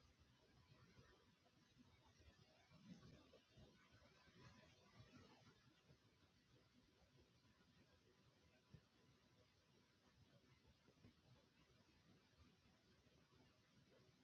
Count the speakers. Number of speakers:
0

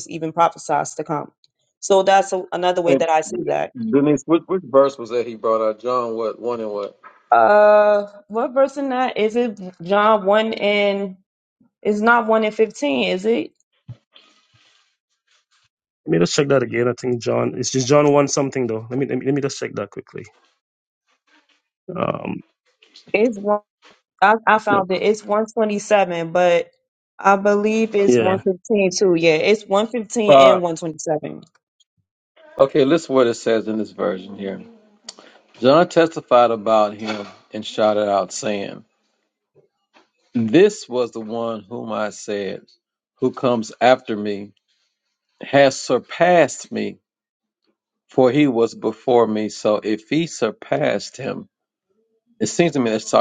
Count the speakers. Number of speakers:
3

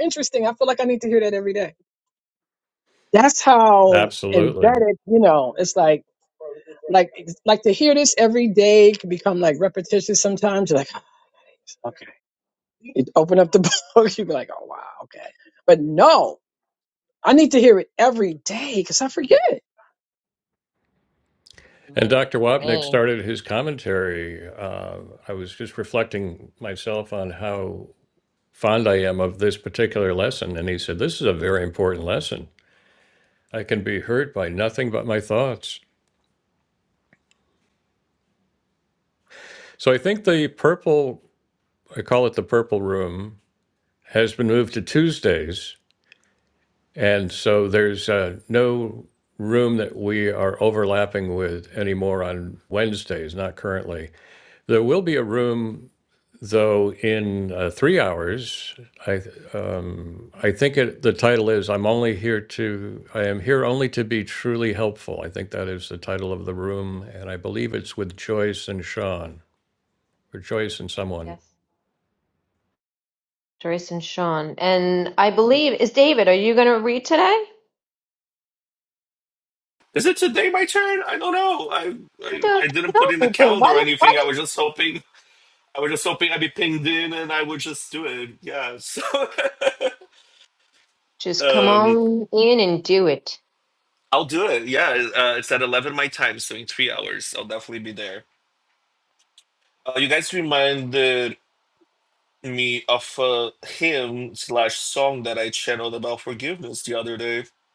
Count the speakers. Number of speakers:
4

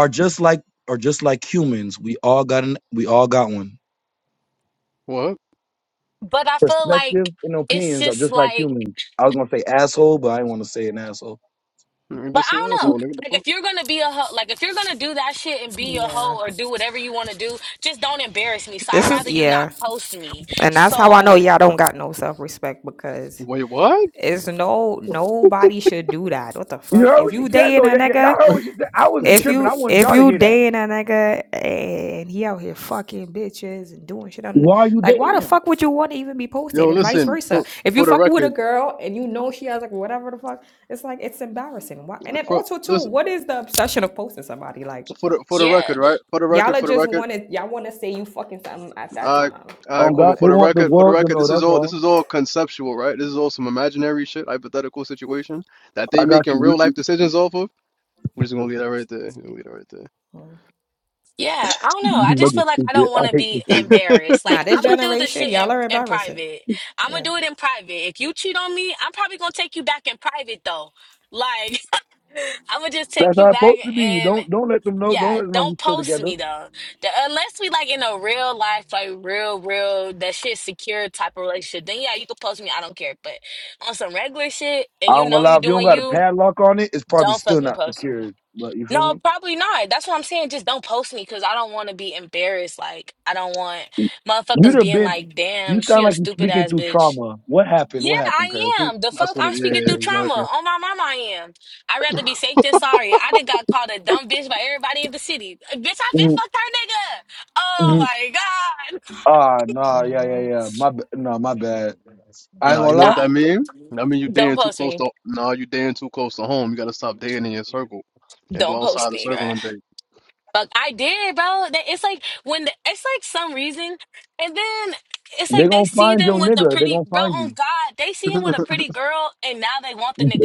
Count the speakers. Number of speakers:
4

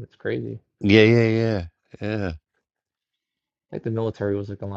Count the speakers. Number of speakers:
2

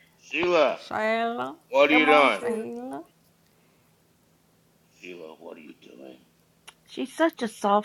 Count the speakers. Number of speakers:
3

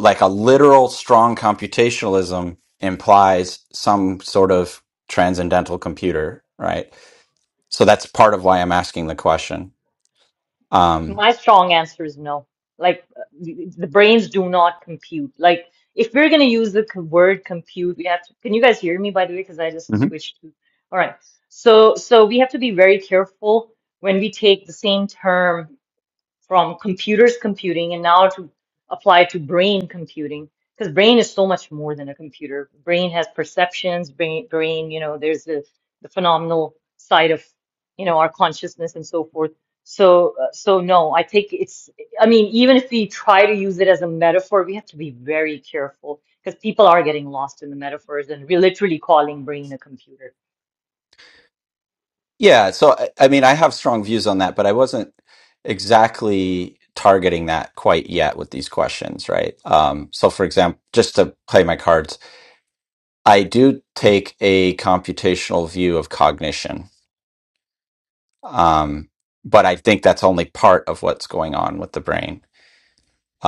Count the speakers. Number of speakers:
2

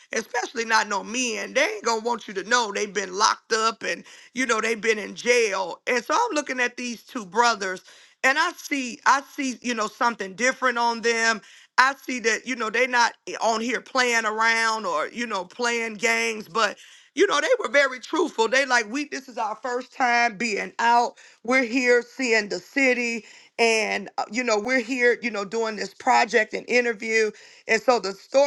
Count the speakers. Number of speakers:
1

